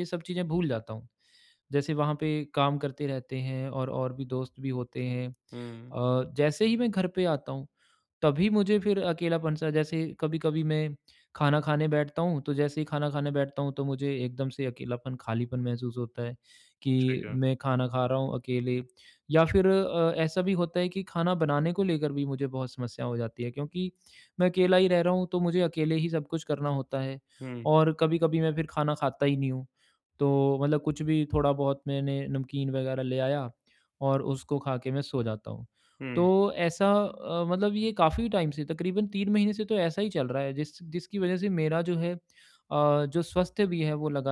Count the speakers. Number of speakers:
two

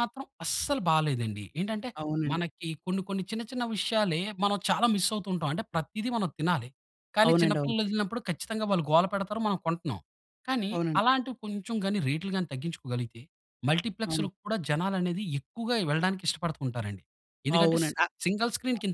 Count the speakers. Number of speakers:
two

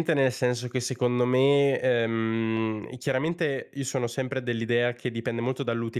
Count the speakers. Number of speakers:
one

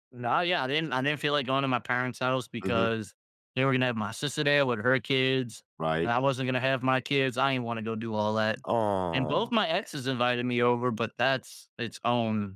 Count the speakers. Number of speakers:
two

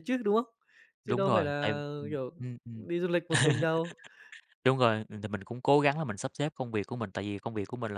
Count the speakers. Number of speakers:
two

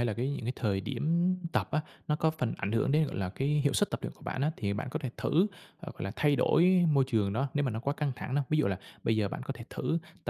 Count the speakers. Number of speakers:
one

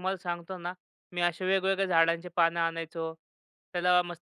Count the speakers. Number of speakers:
one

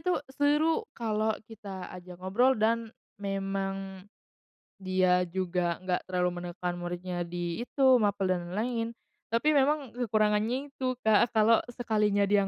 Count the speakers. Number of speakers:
one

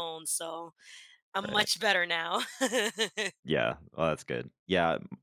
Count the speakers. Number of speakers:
two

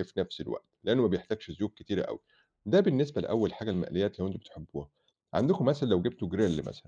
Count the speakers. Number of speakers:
one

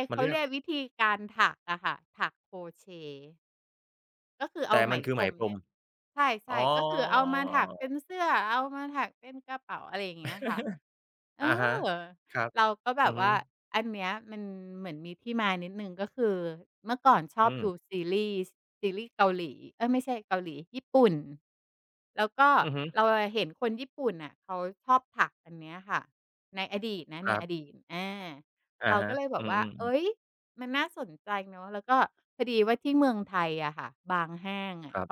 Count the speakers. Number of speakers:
two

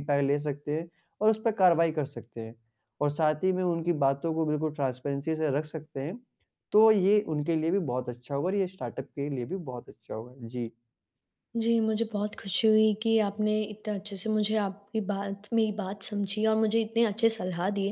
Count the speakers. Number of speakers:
two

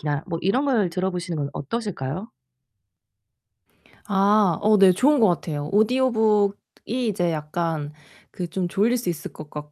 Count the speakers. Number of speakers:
two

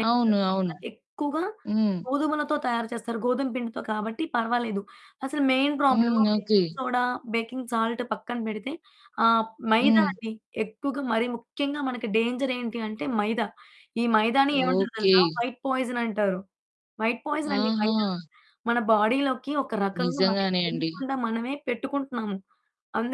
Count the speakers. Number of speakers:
two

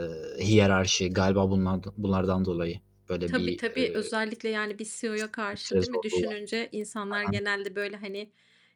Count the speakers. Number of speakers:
two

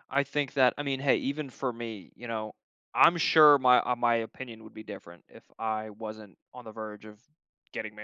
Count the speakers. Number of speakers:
one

